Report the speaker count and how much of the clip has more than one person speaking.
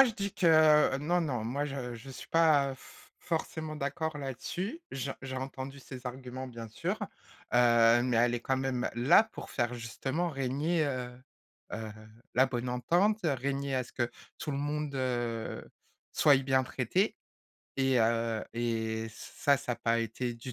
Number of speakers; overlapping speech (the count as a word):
one, no overlap